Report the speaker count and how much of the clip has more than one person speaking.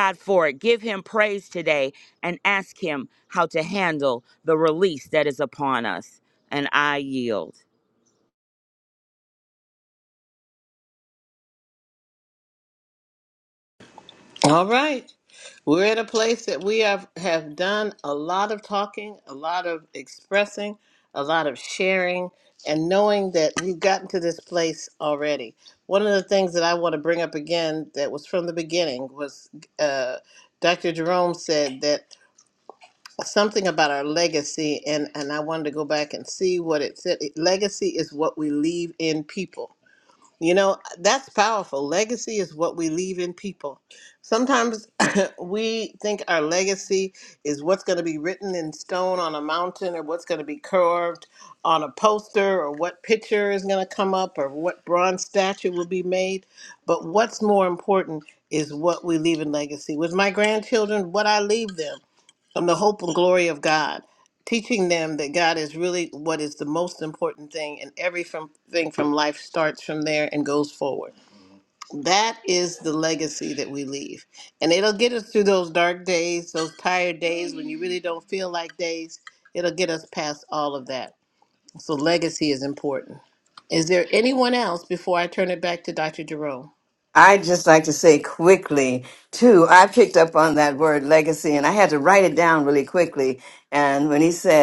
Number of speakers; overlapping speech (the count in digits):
3, no overlap